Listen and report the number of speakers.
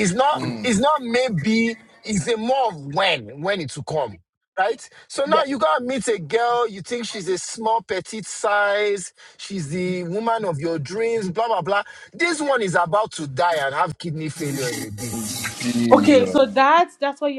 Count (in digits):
3